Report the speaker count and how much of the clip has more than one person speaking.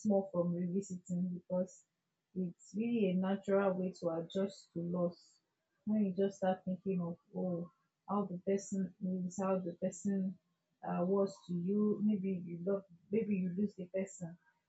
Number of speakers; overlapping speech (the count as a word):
one, no overlap